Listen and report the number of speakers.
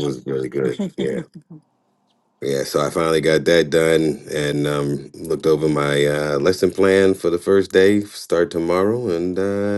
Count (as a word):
one